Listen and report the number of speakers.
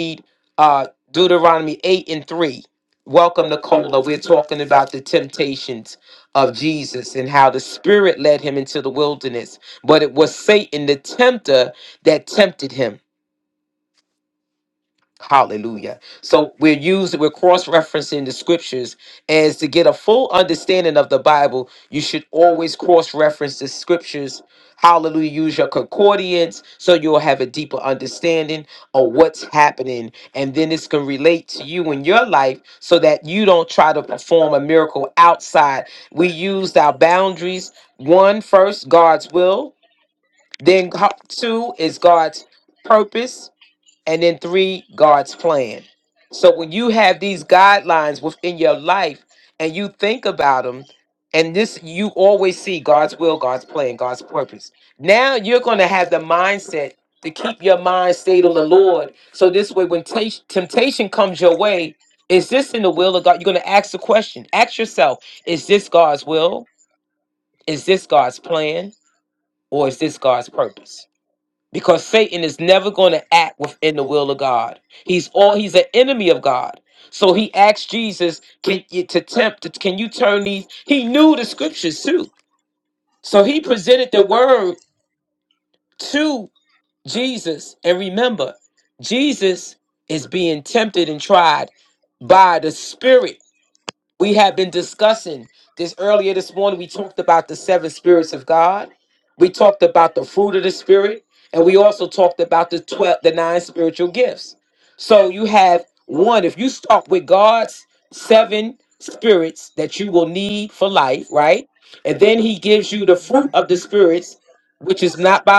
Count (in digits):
1